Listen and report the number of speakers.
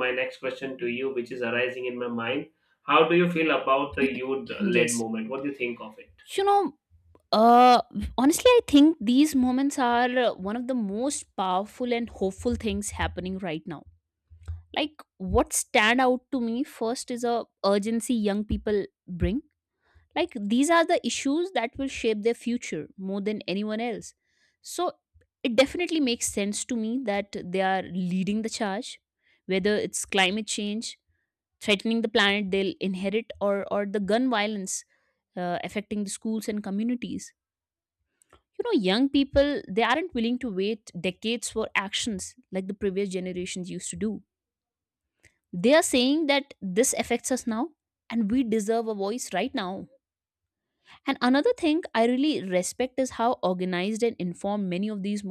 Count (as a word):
two